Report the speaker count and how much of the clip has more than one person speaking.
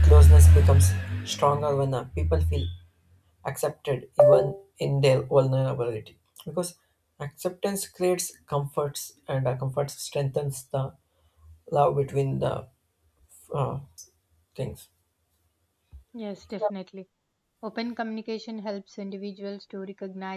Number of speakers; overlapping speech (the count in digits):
2, no overlap